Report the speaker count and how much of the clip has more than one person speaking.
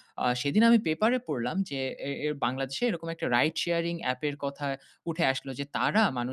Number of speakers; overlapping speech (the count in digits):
1, no overlap